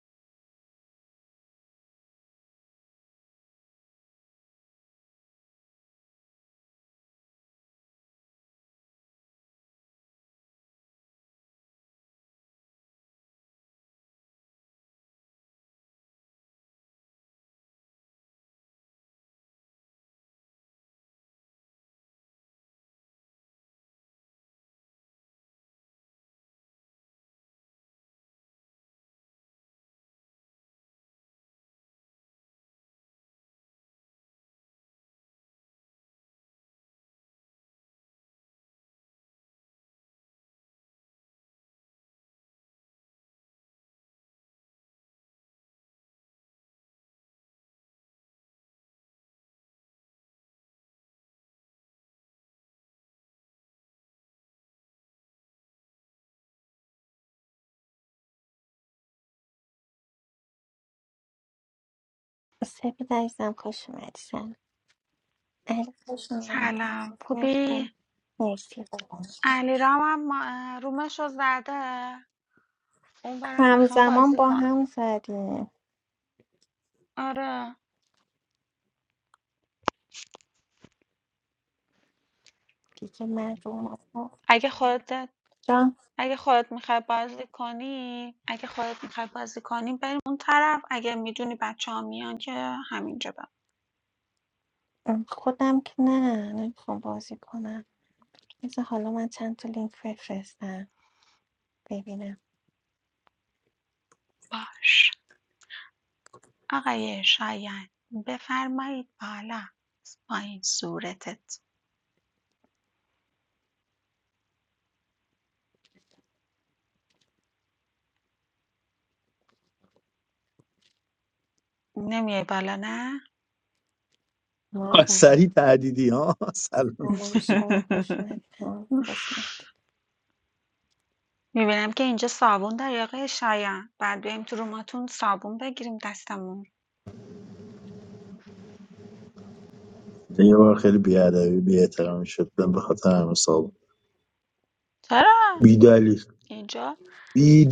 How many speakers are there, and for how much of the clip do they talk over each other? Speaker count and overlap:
3, about 2%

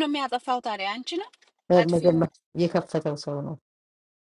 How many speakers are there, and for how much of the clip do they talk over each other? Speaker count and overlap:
2, about 11%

